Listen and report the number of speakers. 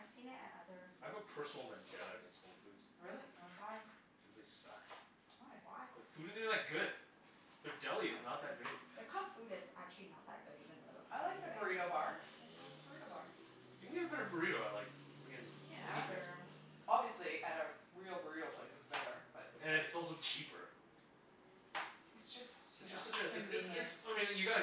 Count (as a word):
three